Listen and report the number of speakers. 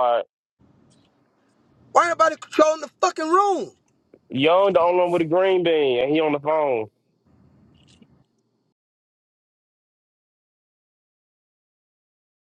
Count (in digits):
2